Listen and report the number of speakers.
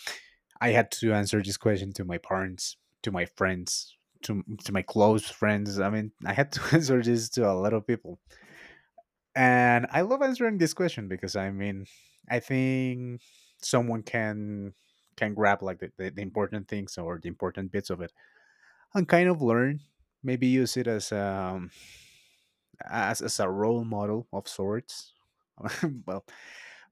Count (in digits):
1